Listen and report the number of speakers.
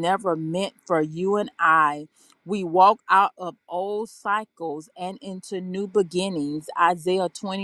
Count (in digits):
1